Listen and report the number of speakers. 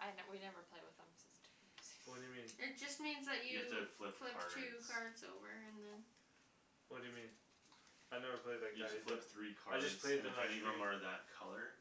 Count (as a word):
four